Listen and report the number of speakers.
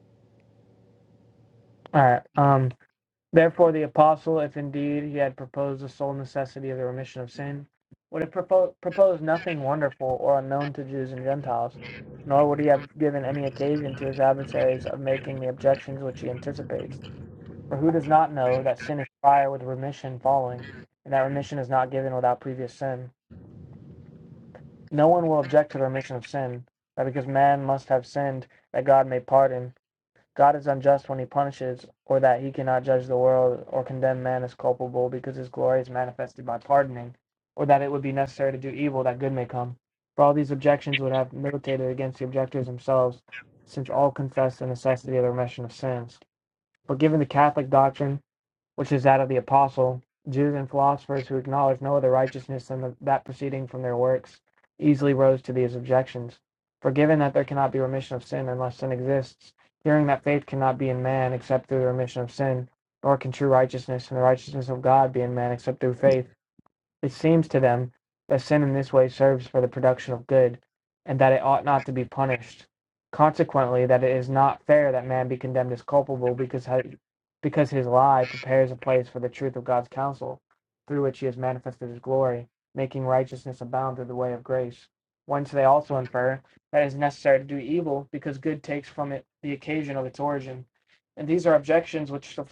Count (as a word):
one